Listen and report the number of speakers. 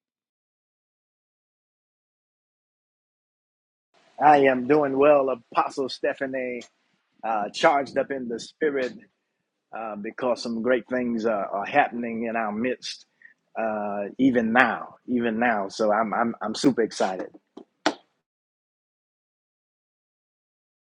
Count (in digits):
1